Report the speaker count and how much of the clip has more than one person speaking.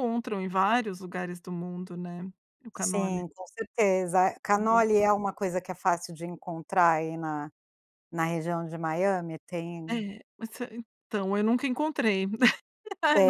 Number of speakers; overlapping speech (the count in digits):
2, about 6%